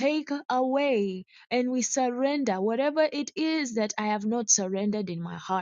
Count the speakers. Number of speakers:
1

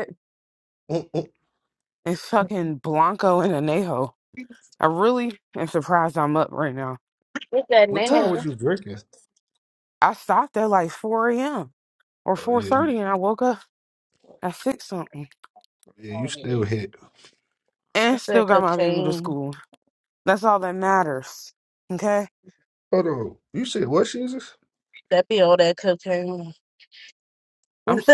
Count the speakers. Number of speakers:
3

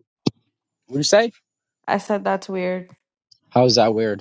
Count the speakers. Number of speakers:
2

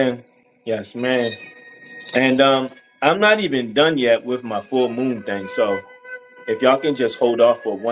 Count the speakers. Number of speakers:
1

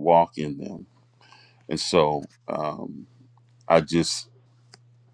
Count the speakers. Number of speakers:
1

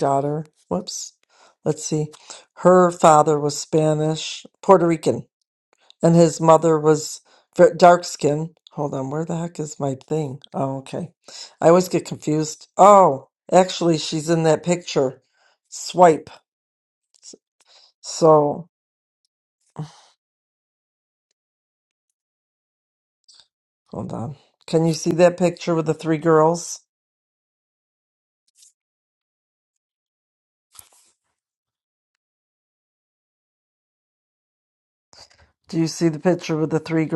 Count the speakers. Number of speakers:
1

